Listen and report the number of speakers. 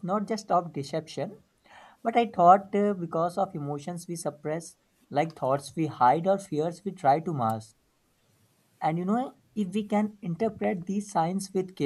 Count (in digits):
1